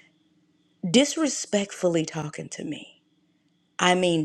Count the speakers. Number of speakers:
1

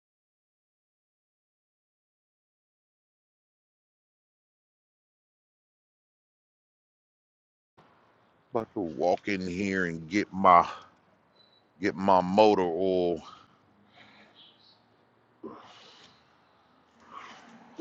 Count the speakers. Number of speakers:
1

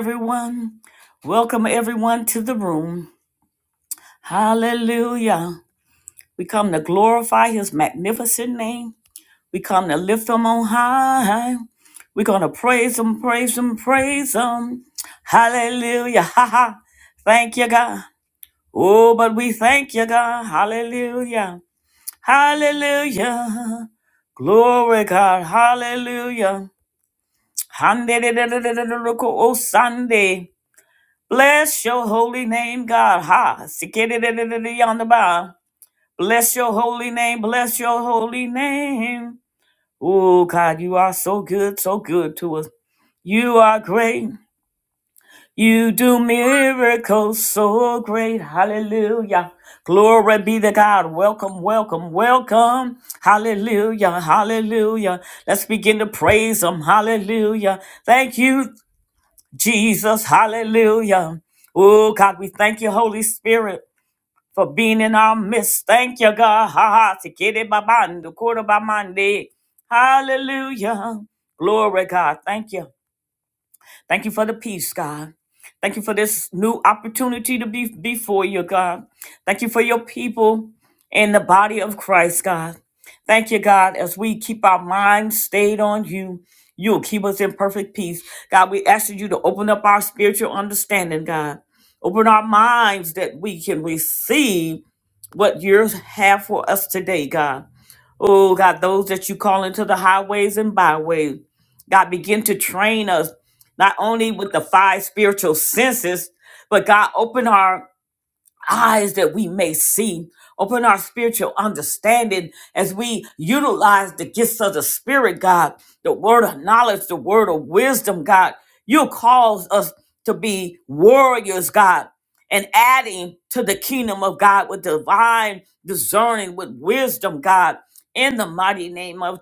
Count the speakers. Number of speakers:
1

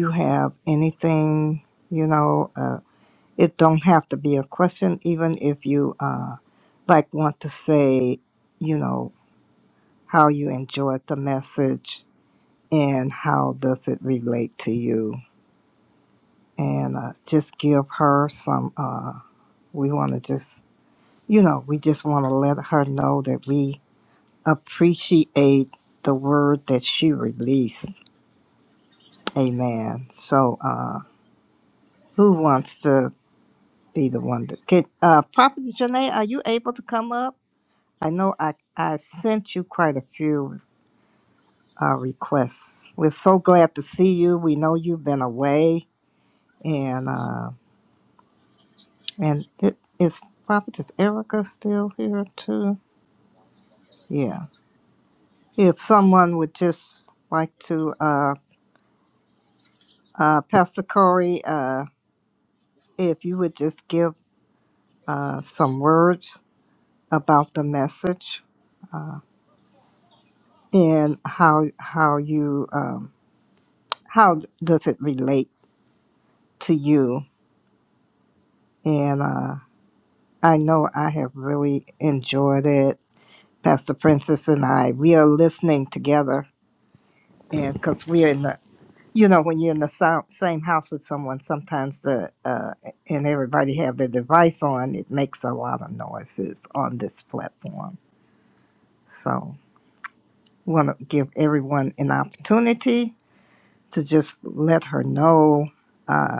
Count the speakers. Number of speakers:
1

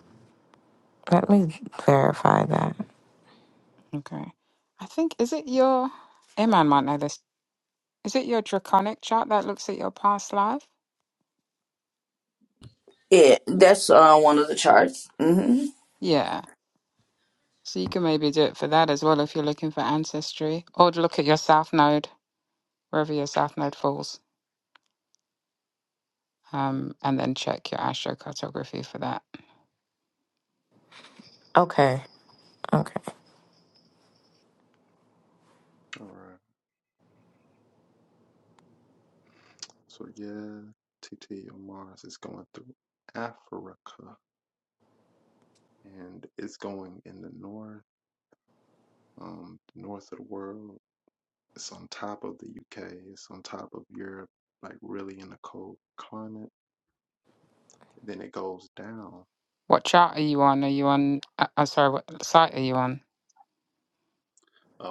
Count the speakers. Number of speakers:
4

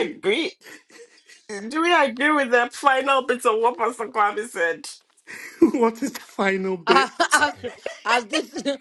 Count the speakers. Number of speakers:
3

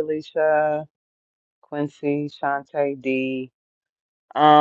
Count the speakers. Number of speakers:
1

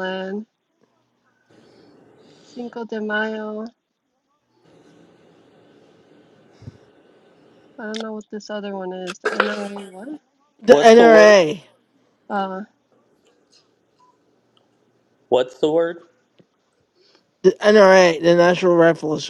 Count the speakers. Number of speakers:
3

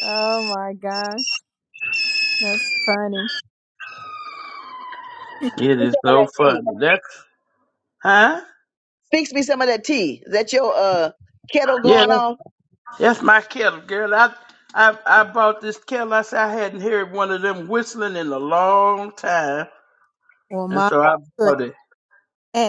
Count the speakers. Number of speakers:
3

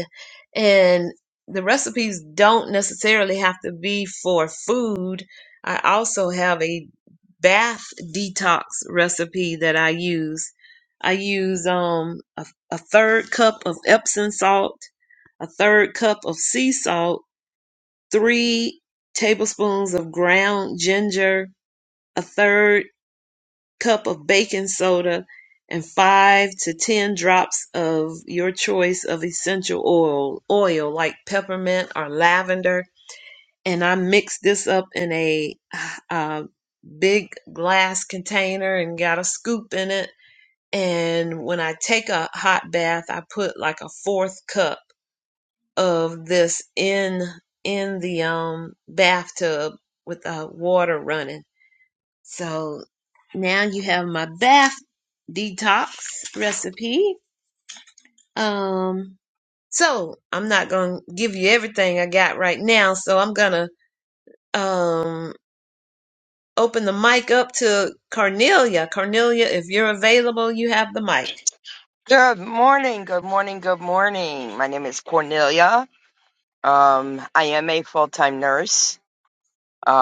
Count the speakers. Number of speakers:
2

